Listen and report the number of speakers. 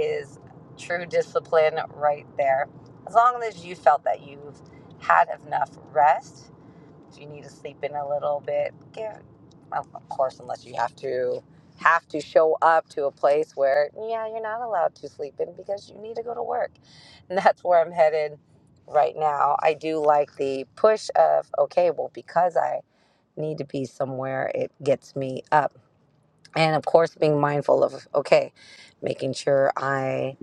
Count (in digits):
1